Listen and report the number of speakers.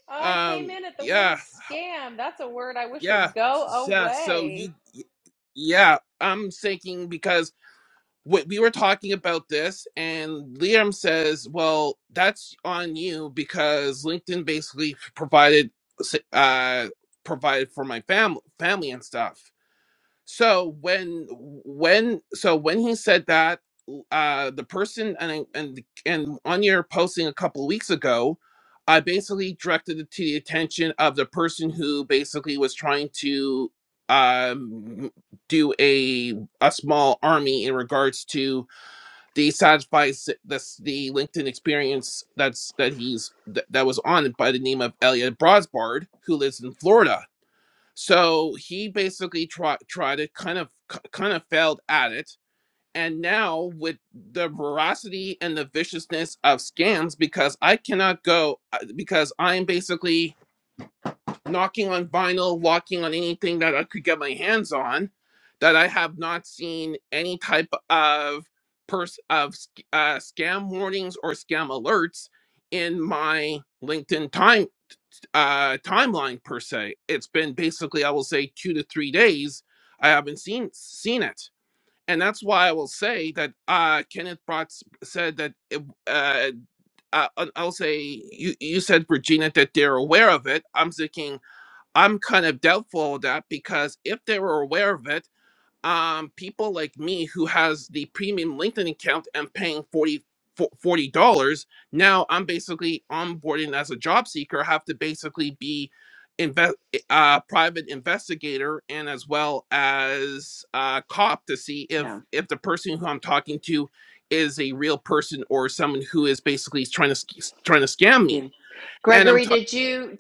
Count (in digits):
3